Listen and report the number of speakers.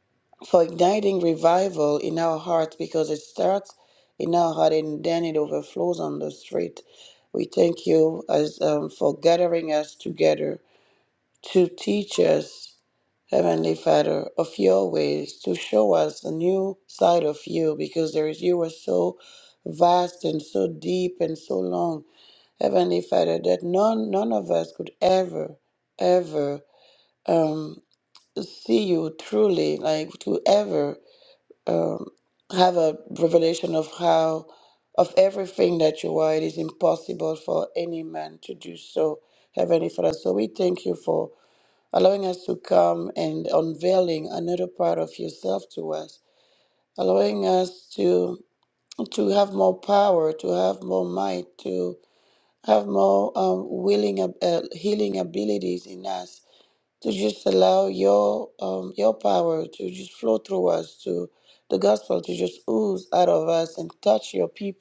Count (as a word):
one